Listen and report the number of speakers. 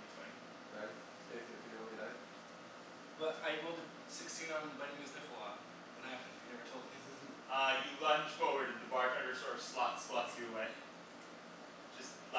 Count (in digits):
3